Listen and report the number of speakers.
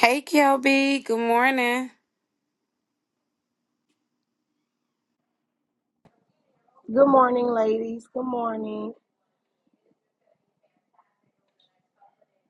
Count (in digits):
2